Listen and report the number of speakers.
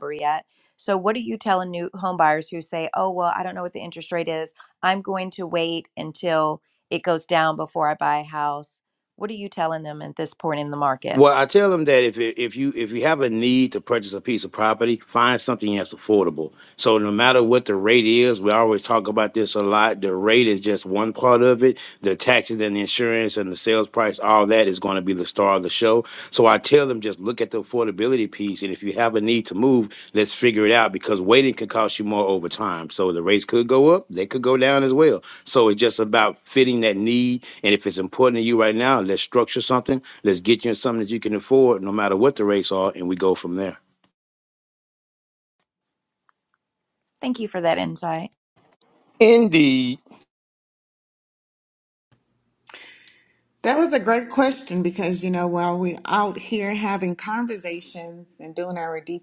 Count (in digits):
3